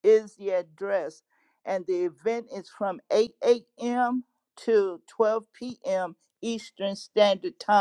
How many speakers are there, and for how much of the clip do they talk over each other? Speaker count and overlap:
one, no overlap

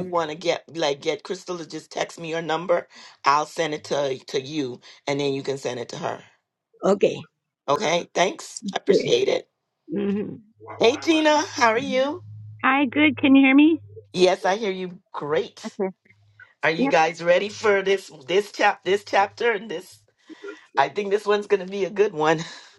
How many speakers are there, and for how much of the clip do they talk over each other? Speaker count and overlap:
three, about 2%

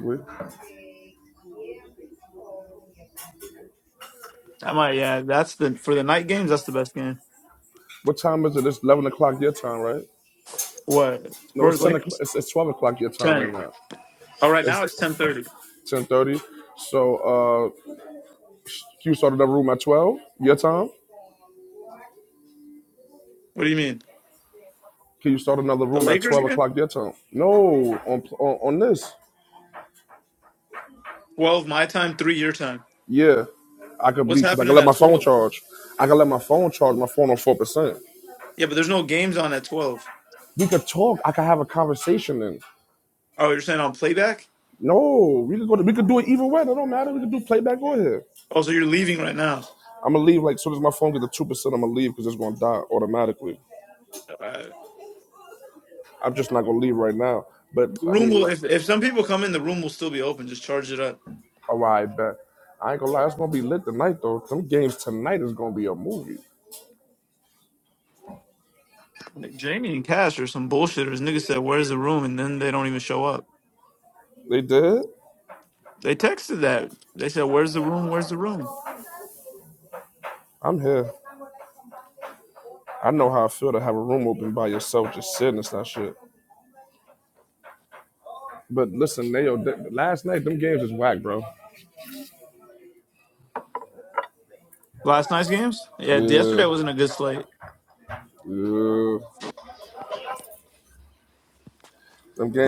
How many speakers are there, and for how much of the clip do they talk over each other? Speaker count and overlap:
two, about 4%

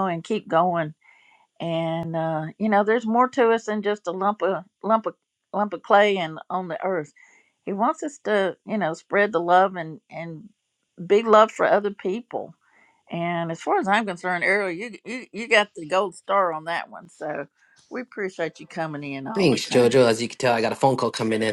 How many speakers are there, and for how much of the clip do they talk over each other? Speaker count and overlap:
two, about 3%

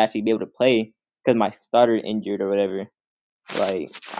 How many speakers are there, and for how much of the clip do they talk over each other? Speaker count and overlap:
one, no overlap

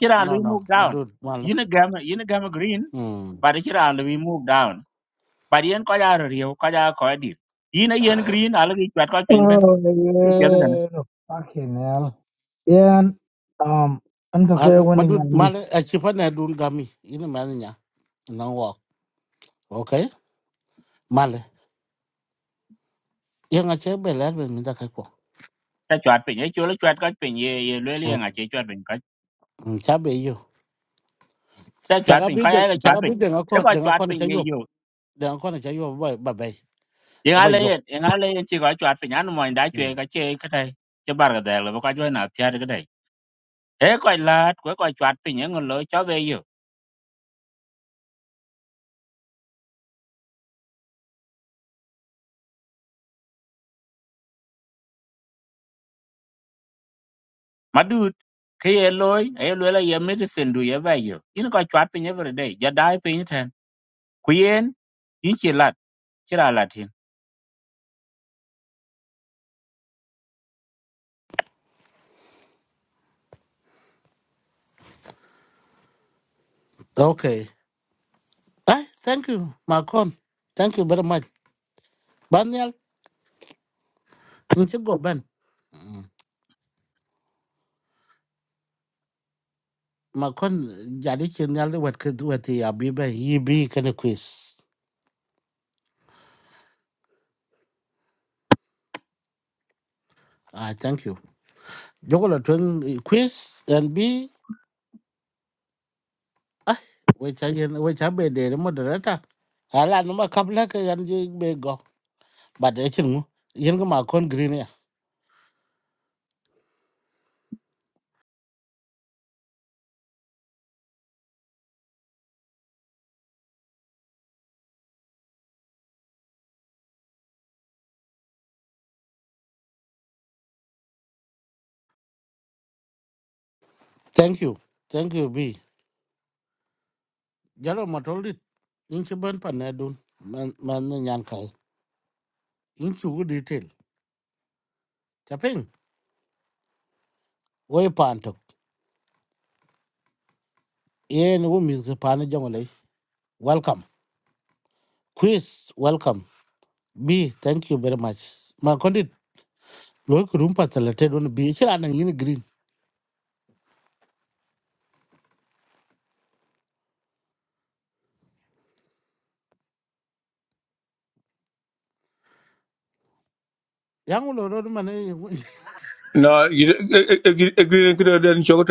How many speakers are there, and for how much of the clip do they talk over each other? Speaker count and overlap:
four, about 3%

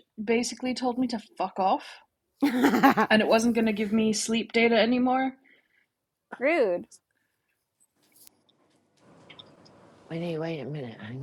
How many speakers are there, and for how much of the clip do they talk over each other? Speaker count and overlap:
three, no overlap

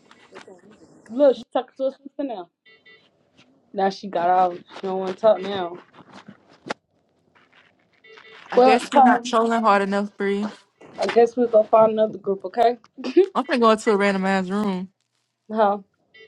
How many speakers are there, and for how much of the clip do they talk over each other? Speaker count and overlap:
two, about 3%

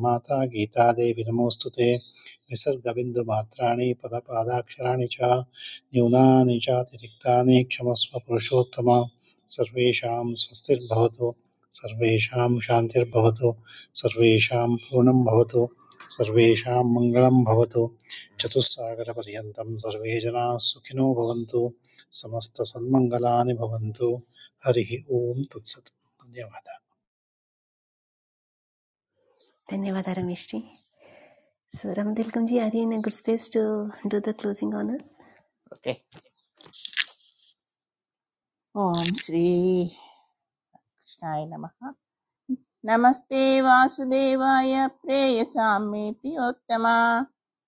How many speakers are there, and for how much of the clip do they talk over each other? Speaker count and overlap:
three, no overlap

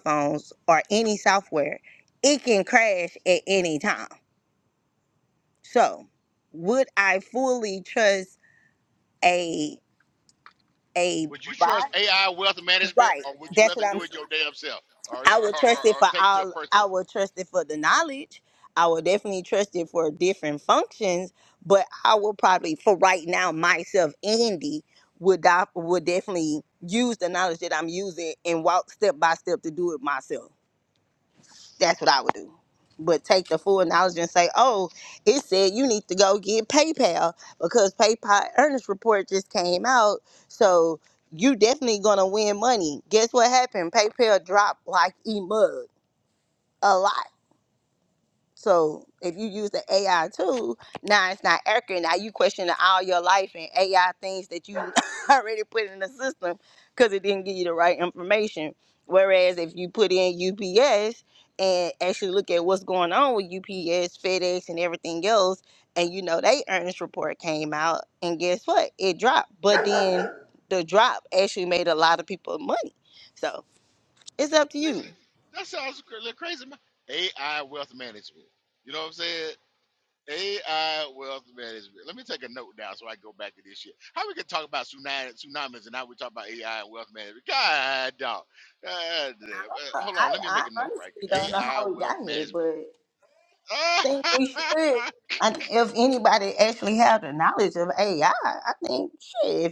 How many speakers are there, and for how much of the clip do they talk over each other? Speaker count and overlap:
two, about 6%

